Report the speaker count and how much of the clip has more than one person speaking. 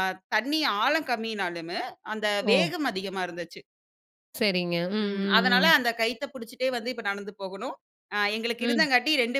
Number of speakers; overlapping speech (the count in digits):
2, about 13%